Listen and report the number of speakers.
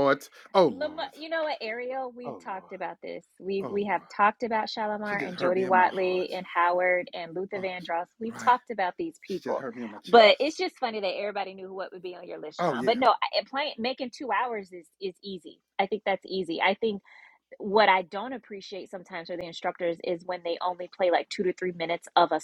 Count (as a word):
two